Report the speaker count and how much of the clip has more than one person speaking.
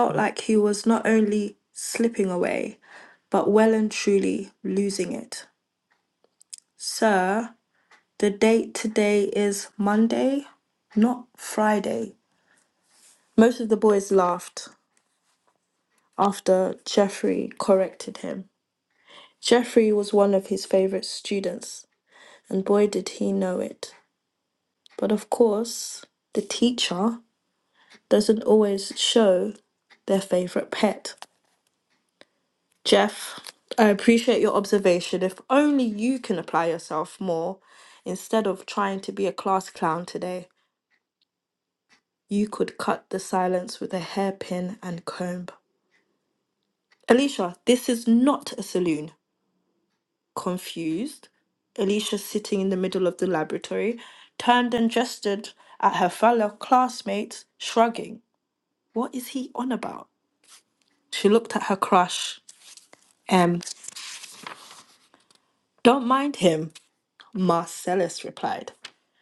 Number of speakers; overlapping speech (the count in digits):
1, no overlap